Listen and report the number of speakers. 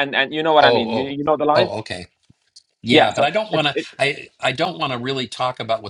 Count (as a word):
two